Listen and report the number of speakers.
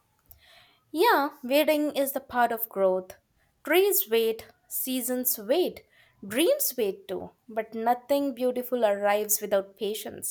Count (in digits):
1